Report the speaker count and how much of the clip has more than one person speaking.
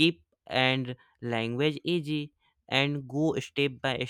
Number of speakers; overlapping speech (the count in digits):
1, no overlap